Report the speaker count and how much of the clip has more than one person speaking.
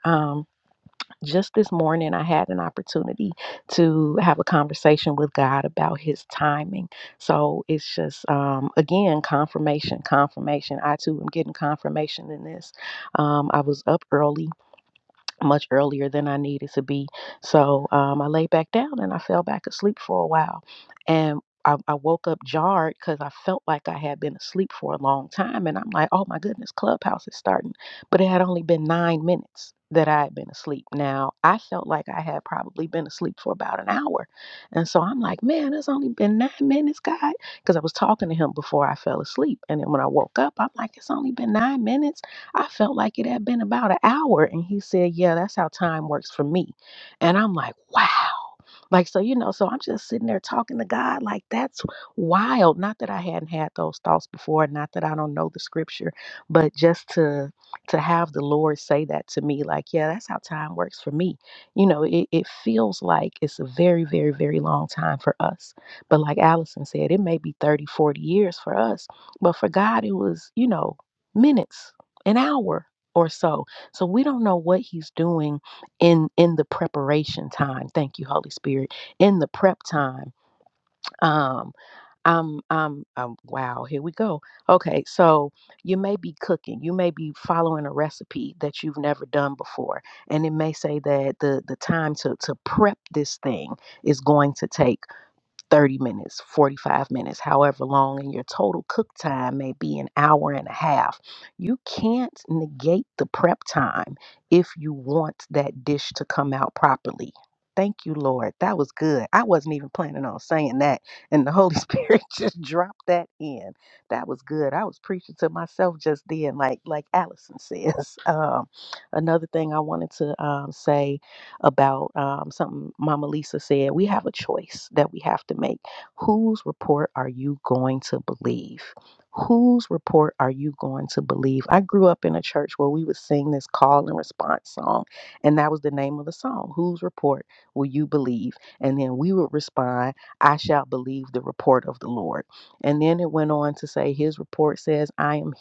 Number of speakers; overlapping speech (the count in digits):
1, no overlap